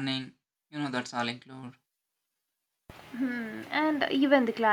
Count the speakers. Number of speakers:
two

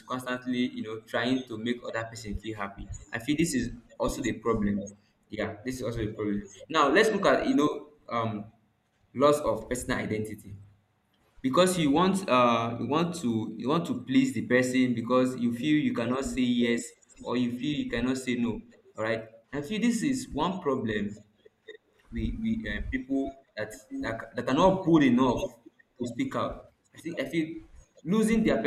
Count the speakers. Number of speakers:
one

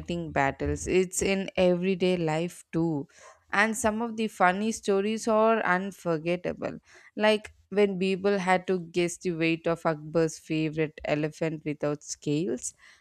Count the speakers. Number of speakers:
one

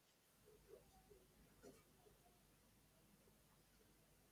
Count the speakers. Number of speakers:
zero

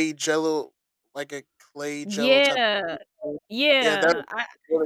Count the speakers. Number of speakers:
two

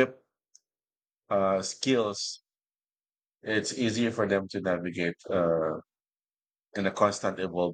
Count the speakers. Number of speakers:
one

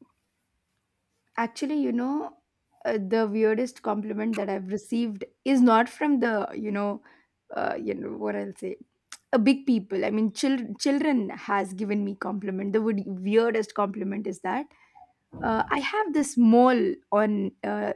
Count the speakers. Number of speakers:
one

